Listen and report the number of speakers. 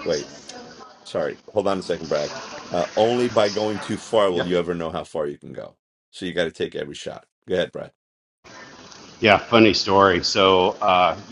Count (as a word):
two